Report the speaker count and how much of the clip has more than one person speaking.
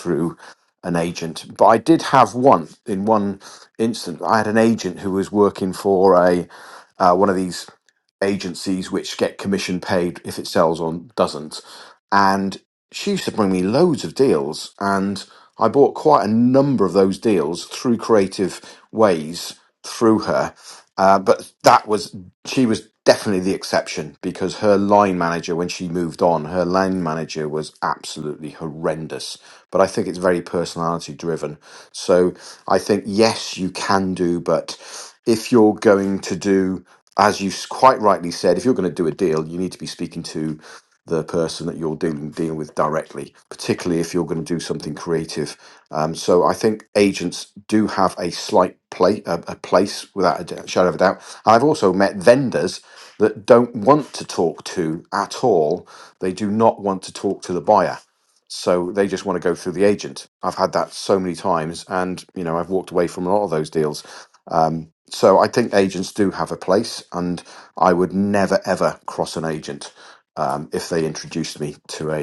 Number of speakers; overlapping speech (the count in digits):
1, no overlap